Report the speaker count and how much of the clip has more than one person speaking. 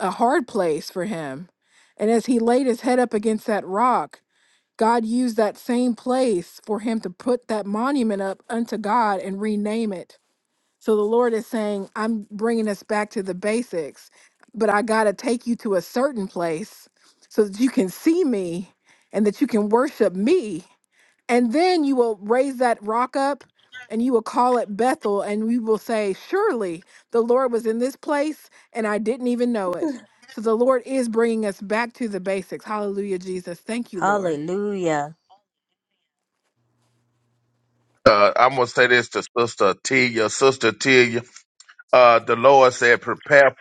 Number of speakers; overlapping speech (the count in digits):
3, about 1%